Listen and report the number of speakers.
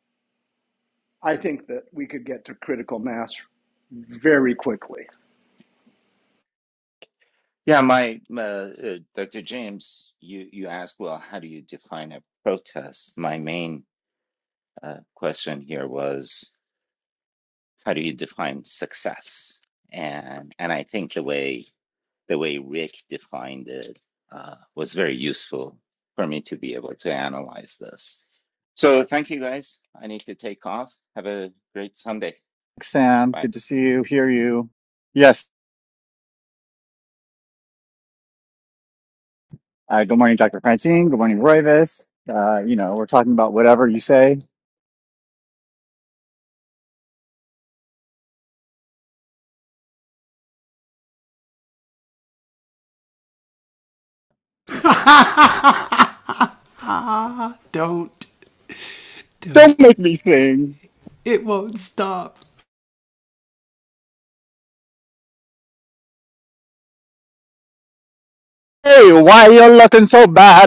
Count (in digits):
4